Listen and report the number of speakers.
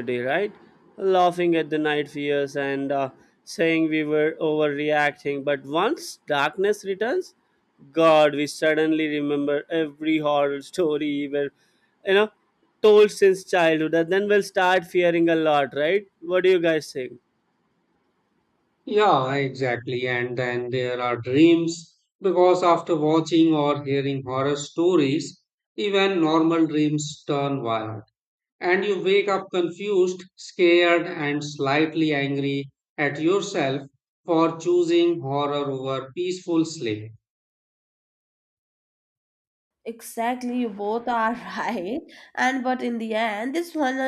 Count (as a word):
three